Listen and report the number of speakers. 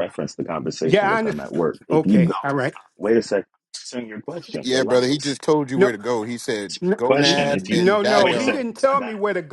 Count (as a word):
three